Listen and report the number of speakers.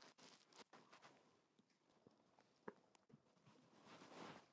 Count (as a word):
zero